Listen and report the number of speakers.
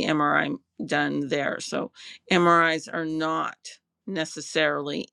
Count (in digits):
1